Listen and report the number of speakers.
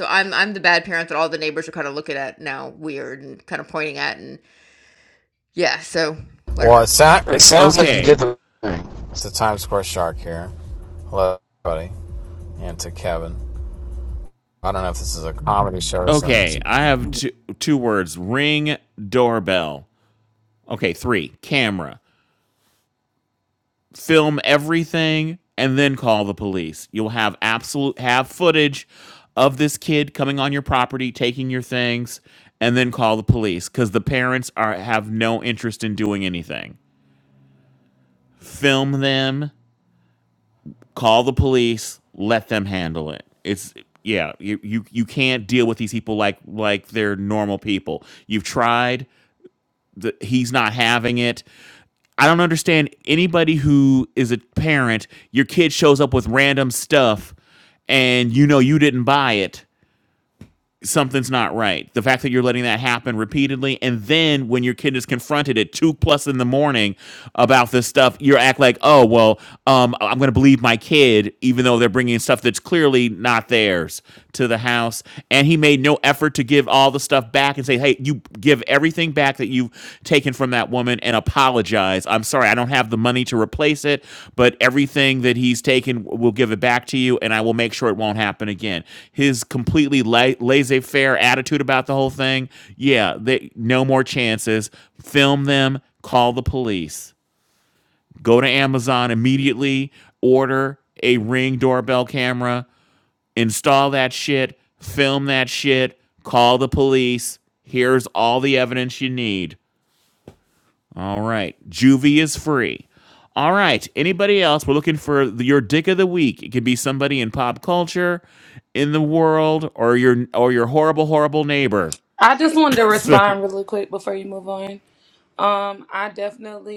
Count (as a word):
four